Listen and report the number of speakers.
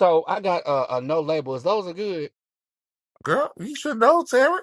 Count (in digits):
2